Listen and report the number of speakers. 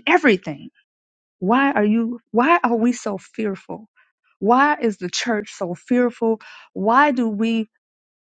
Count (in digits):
1